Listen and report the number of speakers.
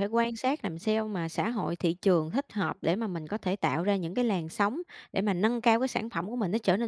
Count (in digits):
1